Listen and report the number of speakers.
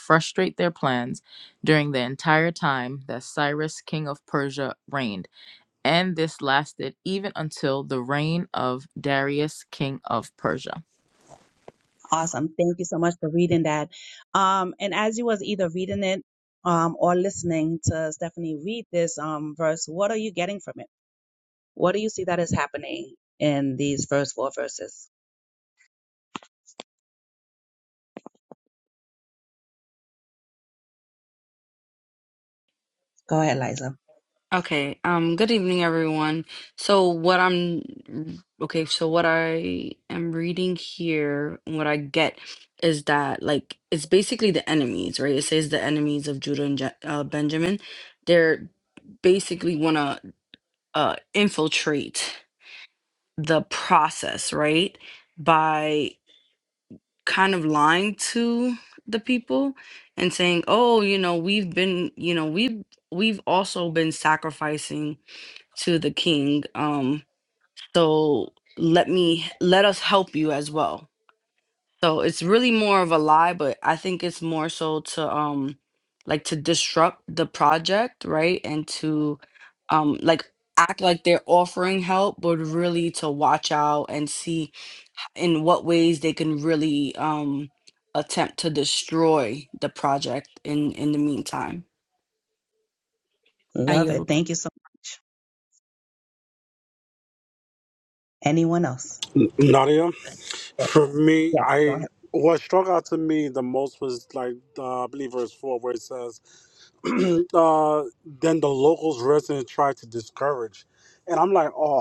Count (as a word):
four